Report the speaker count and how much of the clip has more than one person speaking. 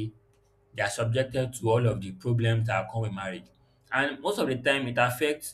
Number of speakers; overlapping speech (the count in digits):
1, no overlap